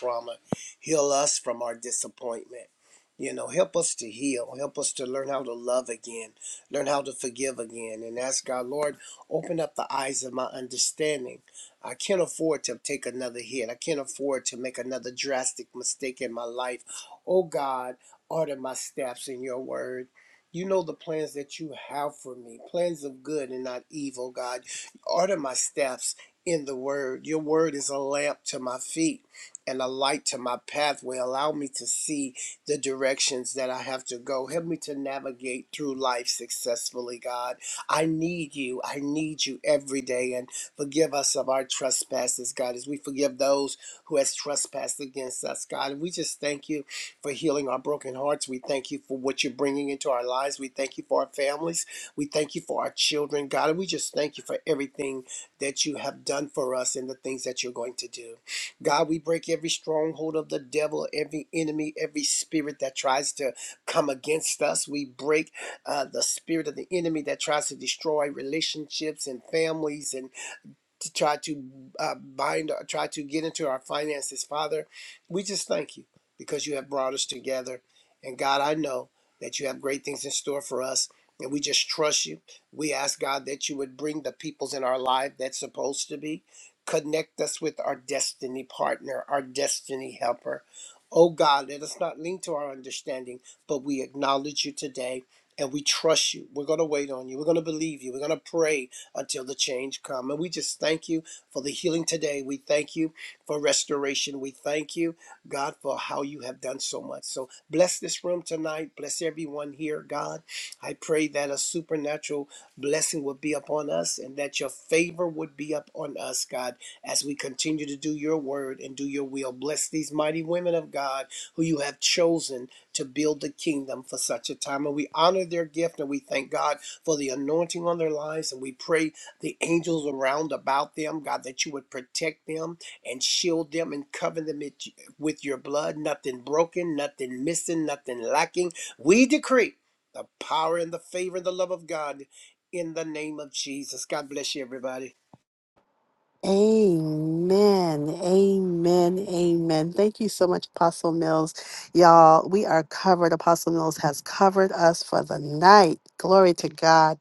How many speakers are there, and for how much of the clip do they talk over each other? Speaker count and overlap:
two, no overlap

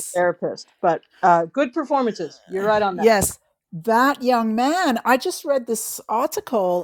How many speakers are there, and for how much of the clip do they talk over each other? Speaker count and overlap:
two, about 9%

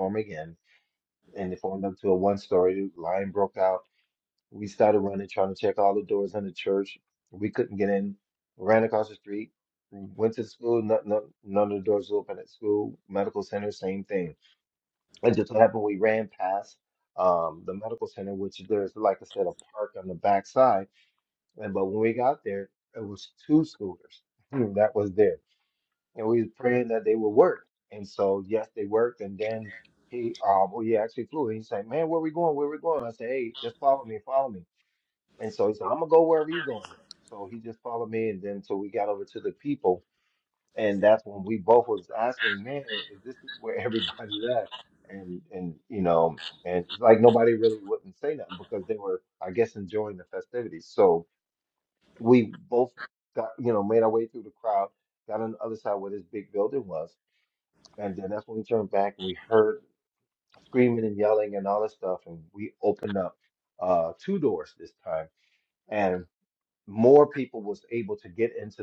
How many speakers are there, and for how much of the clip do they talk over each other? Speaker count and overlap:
one, no overlap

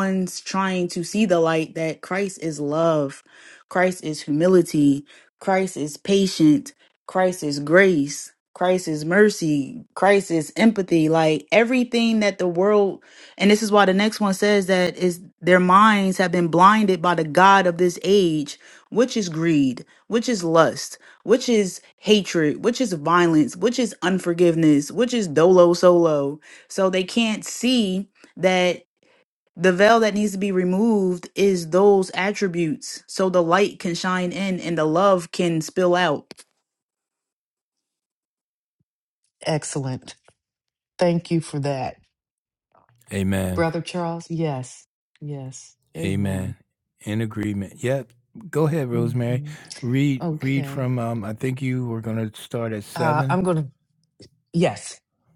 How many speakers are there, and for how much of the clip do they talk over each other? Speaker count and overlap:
three, about 4%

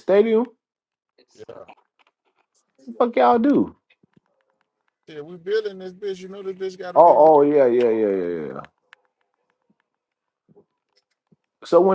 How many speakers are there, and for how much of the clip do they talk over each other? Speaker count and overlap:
two, about 3%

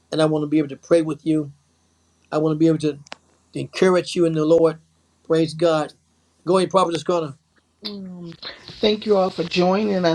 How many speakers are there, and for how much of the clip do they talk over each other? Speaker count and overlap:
two, no overlap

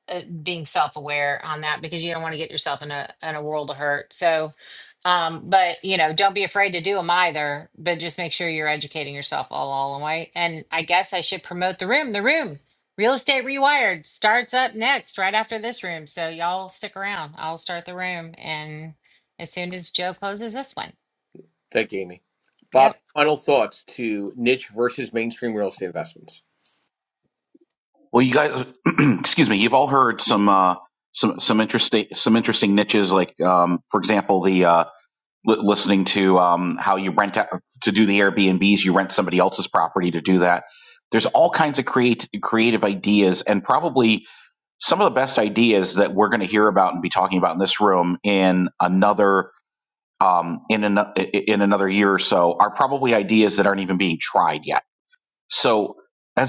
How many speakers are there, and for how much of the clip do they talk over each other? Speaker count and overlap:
three, under 1%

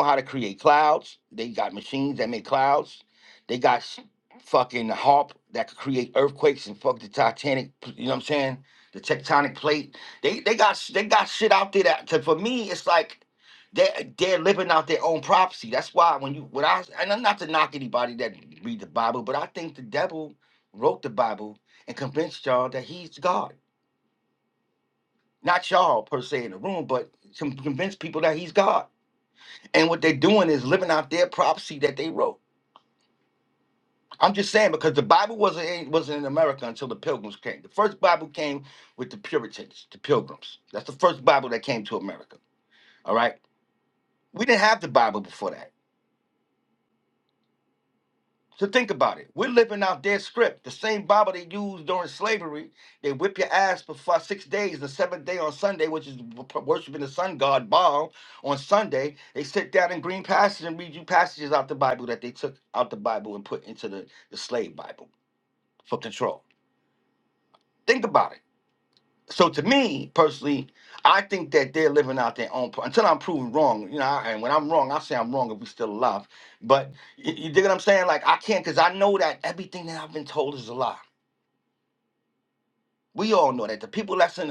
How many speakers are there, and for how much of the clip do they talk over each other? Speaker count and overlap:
one, no overlap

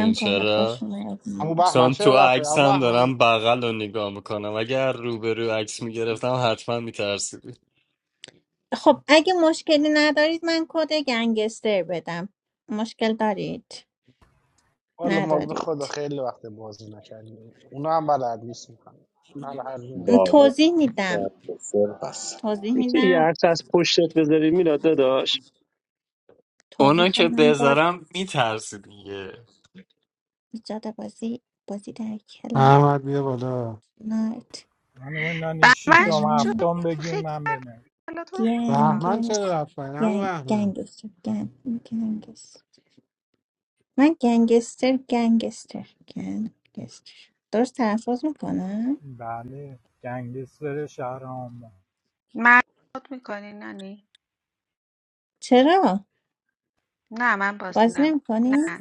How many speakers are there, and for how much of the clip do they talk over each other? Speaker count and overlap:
eight, about 15%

